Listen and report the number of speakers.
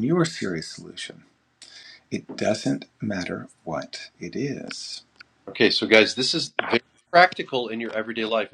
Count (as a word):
two